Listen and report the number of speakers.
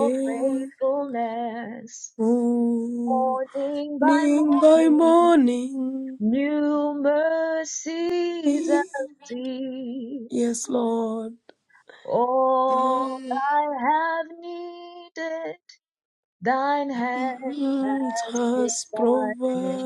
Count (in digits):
2